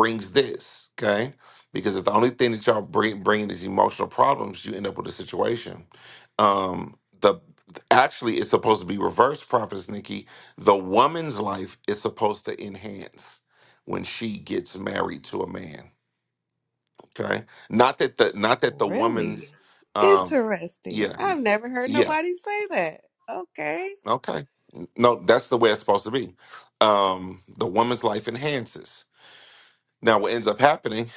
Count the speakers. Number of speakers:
two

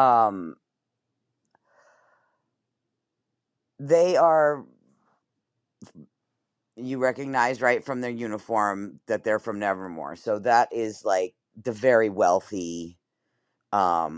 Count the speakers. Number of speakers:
one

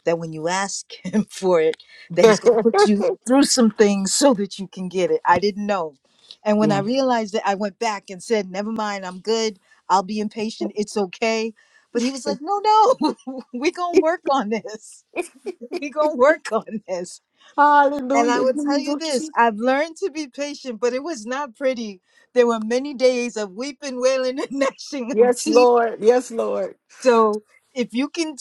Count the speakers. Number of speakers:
two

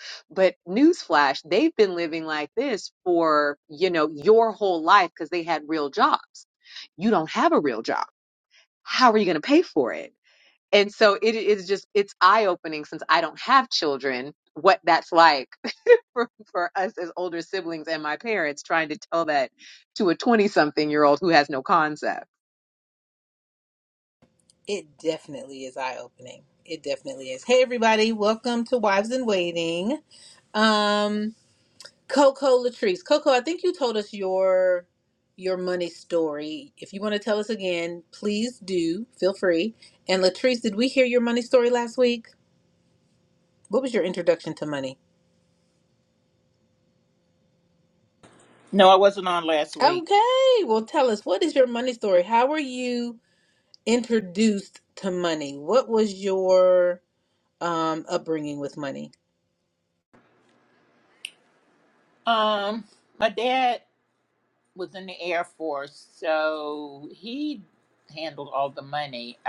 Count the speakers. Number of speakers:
three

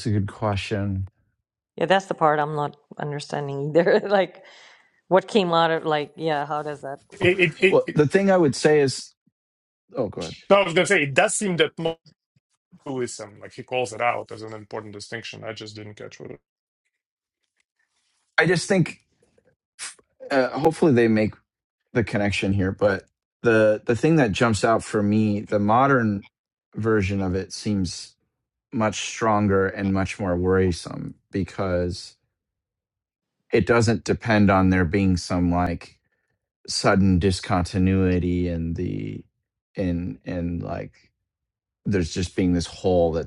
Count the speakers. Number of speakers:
three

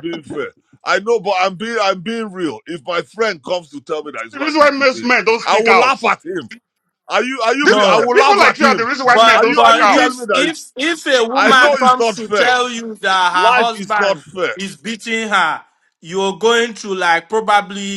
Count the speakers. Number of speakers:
three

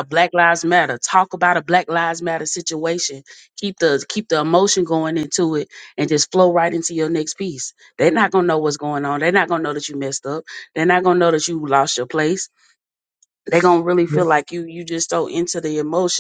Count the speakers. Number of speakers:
one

